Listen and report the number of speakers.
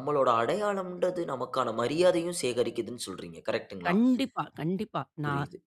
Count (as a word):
two